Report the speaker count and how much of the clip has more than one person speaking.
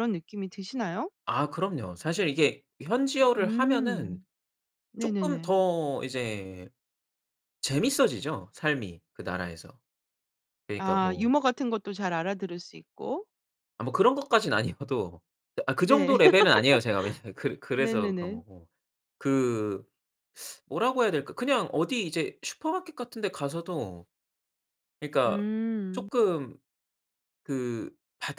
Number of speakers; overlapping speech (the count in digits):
2, about 10%